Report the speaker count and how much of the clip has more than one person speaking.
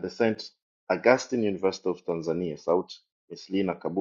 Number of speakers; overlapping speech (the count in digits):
1, no overlap